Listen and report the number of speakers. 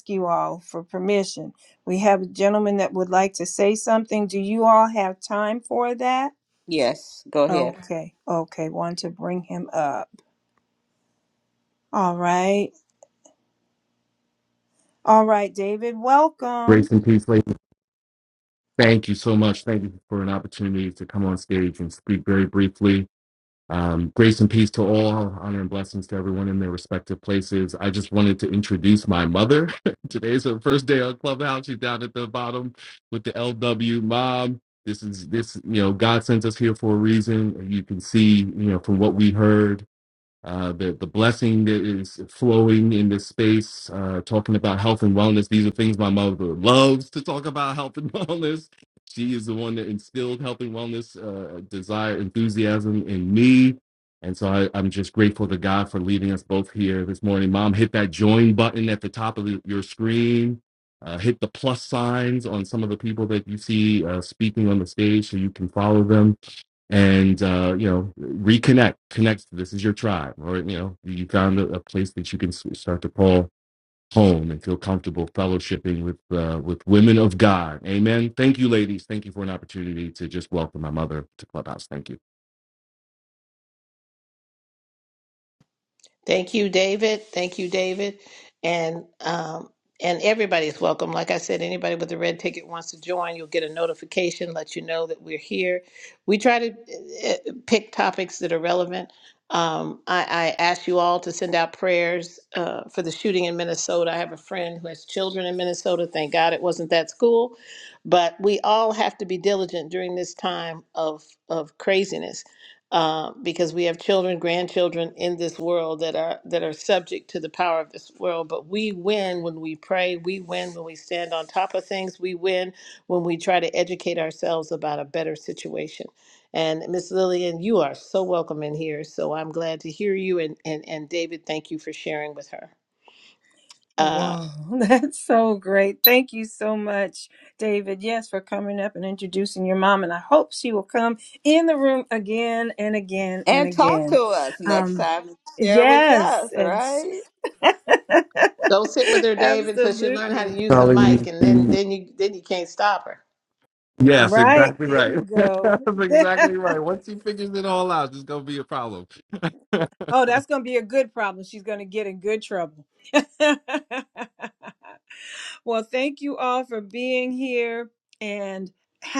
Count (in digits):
4